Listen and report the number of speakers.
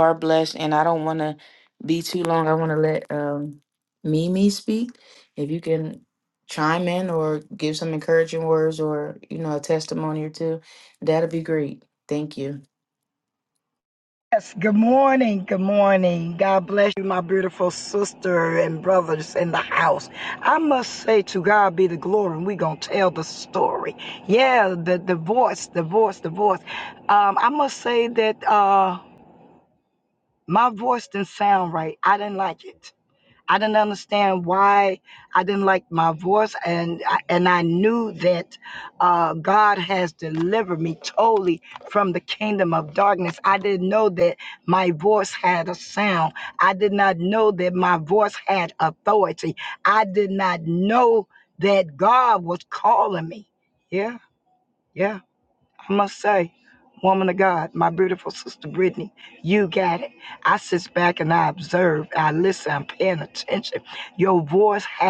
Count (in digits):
2